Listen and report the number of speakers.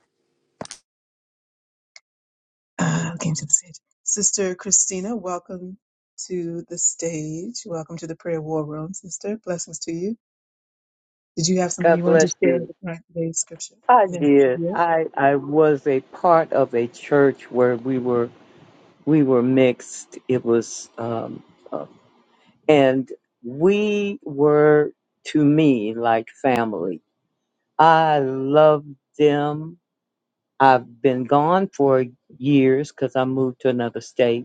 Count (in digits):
2